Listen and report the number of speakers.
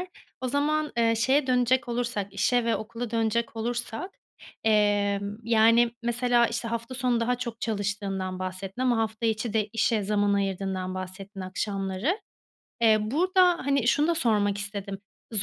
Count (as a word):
one